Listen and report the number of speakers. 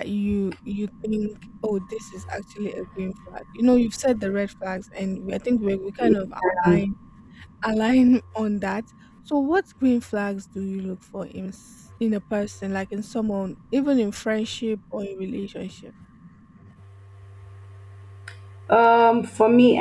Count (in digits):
2